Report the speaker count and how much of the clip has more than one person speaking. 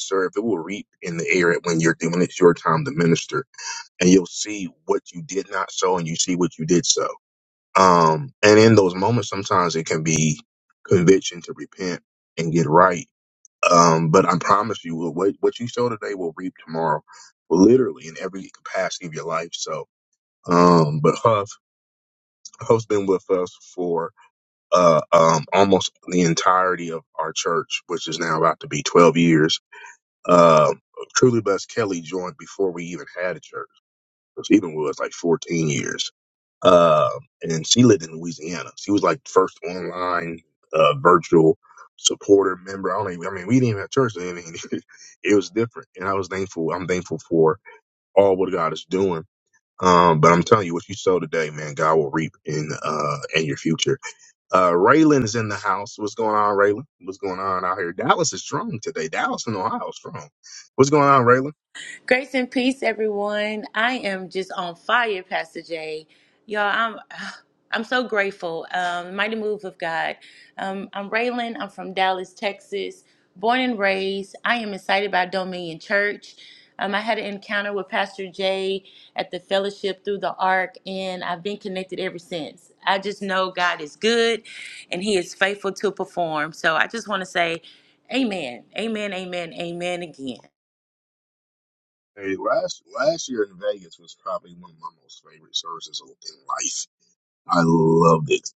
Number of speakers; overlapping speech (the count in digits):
2, no overlap